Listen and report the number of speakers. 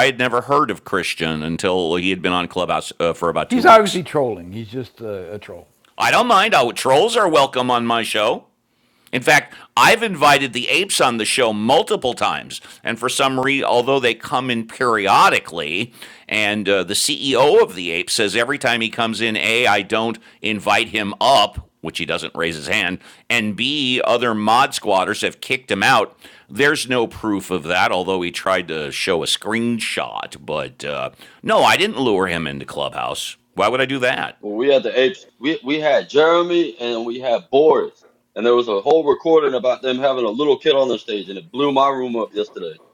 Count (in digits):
3